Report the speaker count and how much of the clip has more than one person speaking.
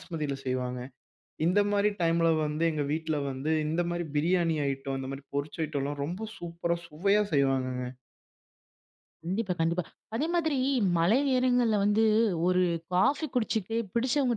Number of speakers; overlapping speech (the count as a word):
two, no overlap